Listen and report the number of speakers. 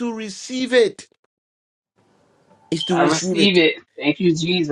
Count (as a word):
two